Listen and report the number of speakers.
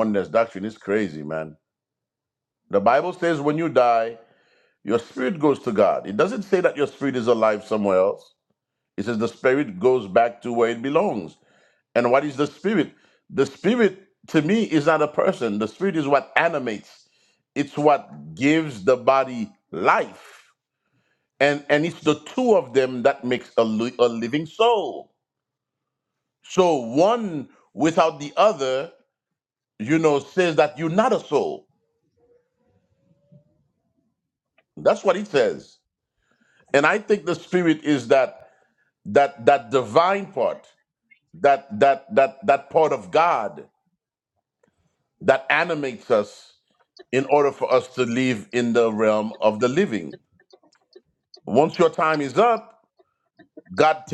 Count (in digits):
1